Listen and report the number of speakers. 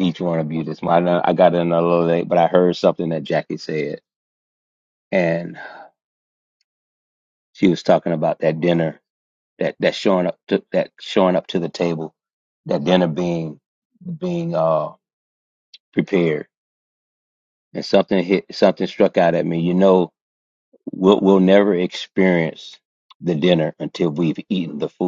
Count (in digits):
1